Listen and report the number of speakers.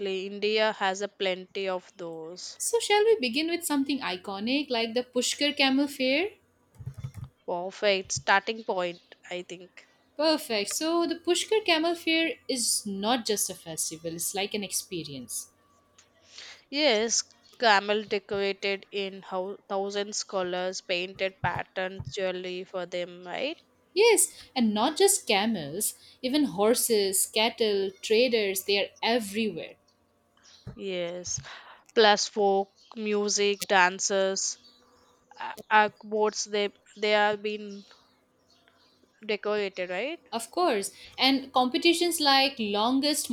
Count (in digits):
2